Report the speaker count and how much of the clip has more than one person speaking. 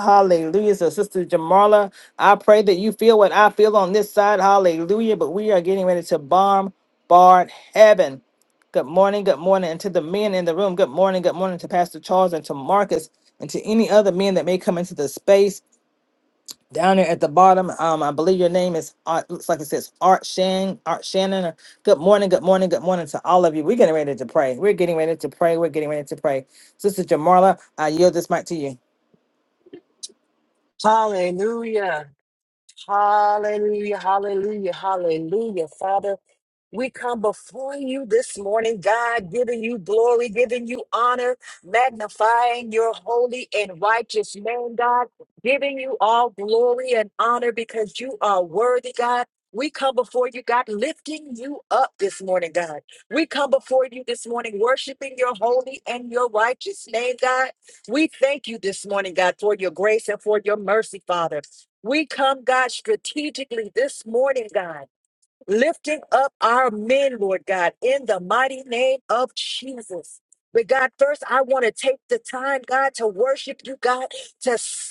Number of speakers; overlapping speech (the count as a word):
two, no overlap